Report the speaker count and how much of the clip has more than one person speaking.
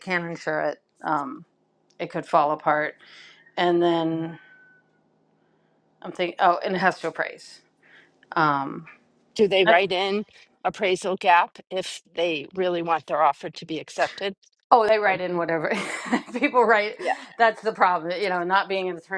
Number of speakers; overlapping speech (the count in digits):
2, about 3%